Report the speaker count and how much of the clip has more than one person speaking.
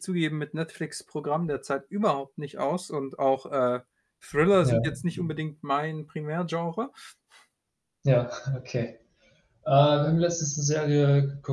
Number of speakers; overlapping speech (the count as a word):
two, about 2%